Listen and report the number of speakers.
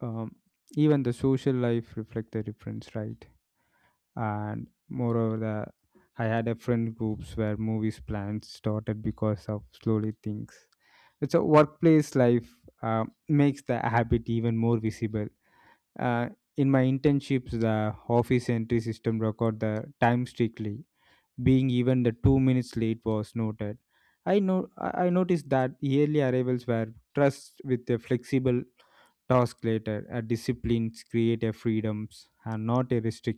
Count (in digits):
1